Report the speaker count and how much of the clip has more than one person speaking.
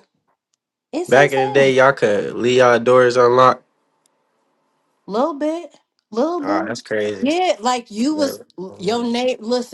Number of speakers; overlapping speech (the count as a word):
two, about 12%